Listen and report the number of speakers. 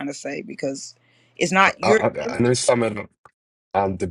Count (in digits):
2